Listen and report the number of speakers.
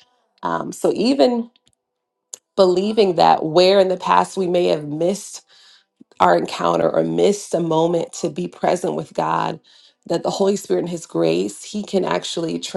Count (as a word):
one